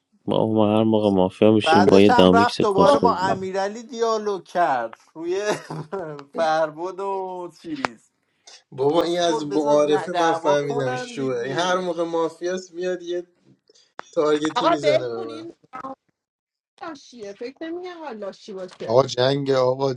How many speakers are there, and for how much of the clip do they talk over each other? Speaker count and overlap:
5, about 28%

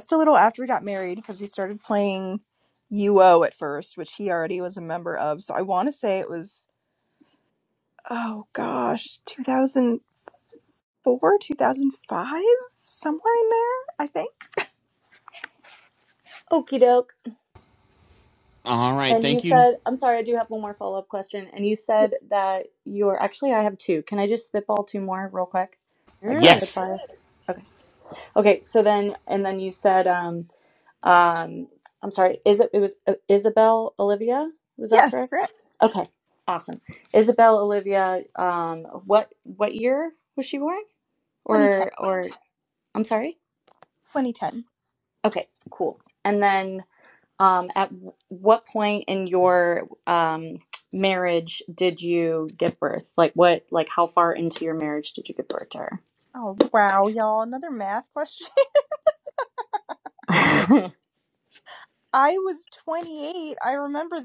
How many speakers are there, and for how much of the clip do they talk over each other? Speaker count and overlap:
3, about 3%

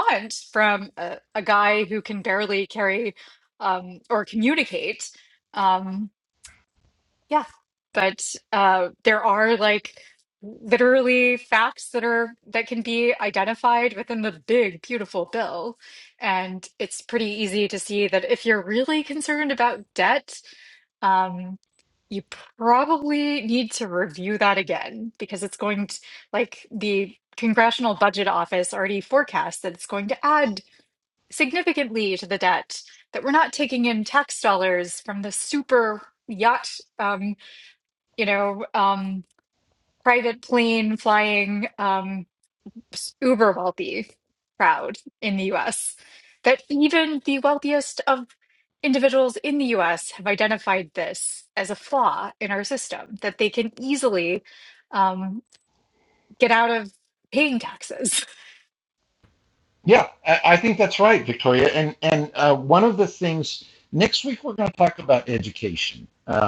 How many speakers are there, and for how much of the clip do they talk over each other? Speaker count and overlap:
2, no overlap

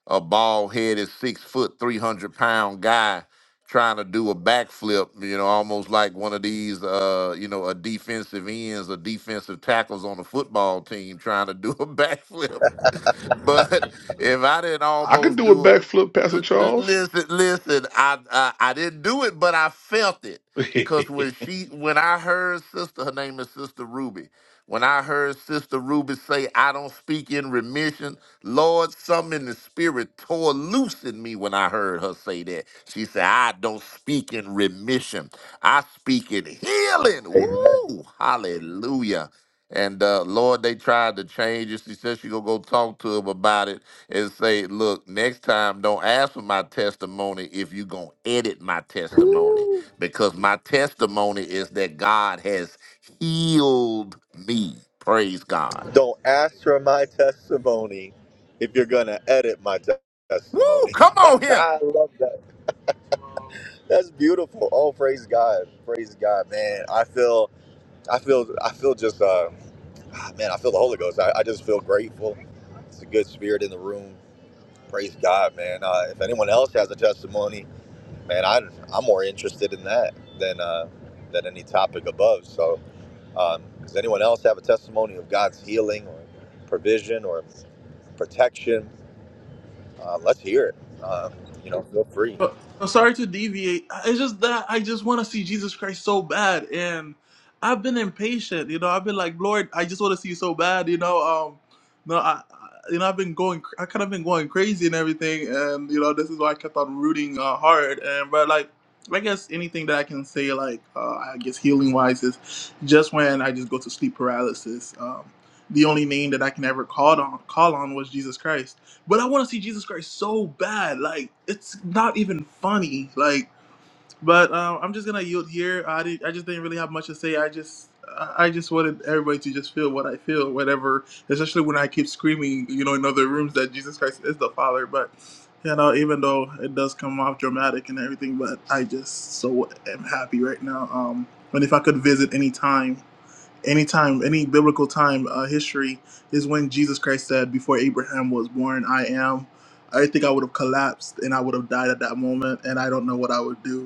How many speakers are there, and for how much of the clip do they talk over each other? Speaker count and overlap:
4, about 2%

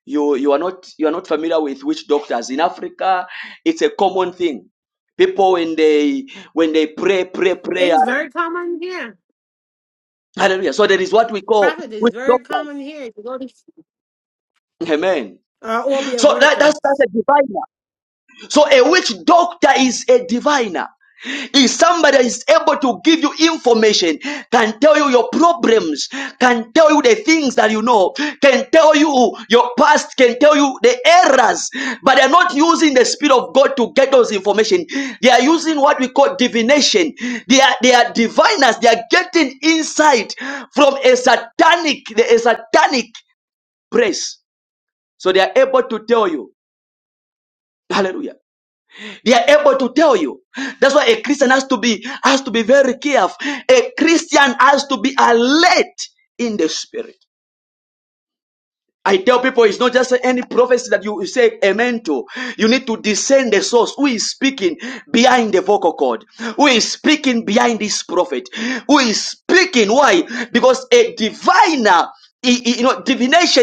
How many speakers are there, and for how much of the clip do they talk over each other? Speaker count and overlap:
2, about 3%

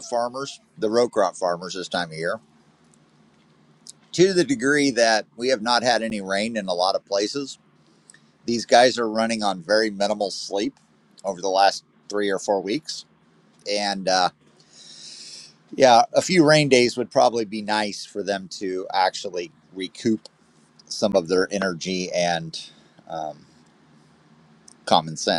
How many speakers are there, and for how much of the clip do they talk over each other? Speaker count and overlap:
1, no overlap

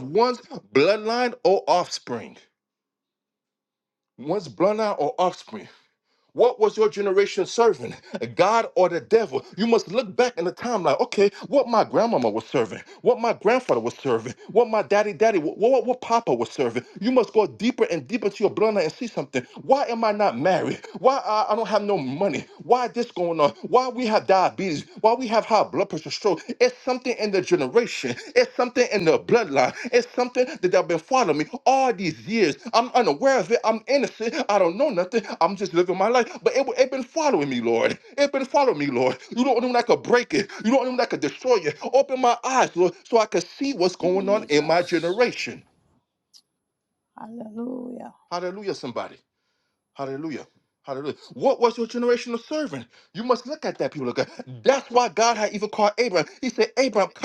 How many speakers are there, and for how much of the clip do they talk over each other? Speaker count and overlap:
2, about 2%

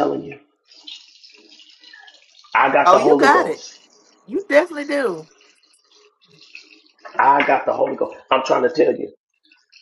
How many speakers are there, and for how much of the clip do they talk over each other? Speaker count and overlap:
2, about 7%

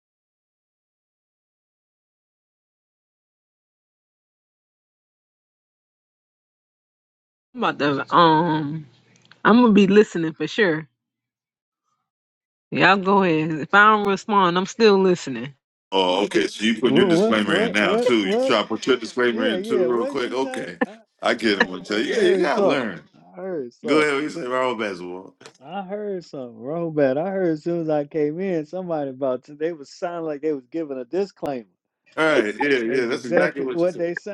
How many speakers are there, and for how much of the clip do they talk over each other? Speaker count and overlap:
3, about 18%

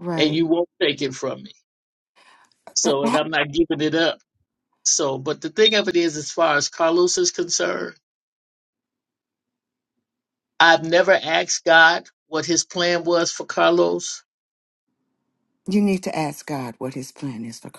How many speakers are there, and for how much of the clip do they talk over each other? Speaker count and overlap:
2, about 3%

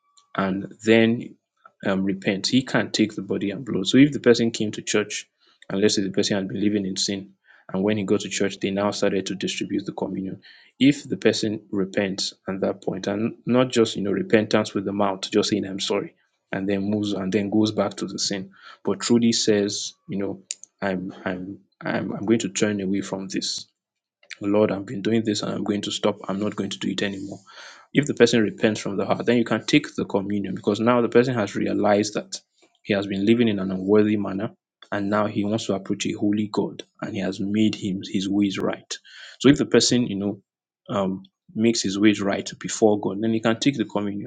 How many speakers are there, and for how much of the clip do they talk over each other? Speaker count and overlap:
1, no overlap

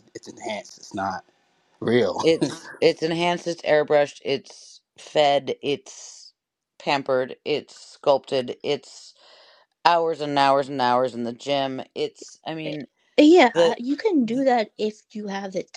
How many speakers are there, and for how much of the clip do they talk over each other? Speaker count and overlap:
3, about 2%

